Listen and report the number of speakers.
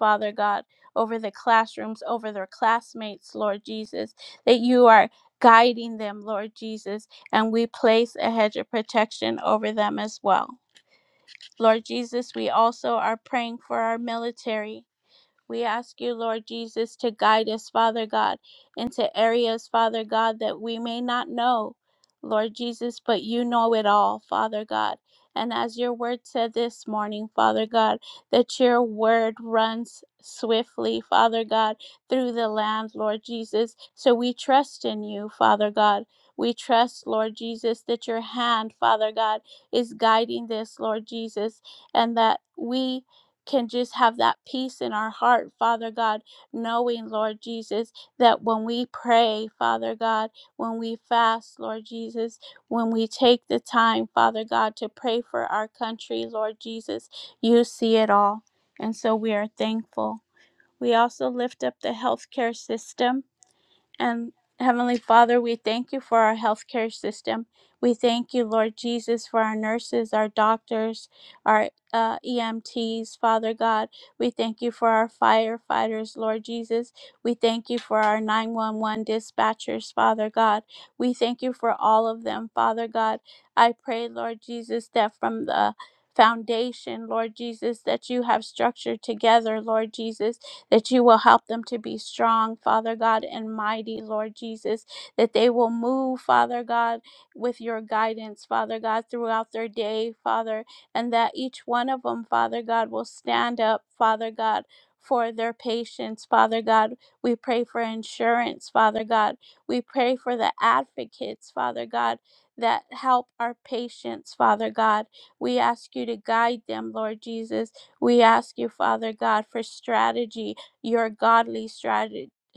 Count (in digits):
1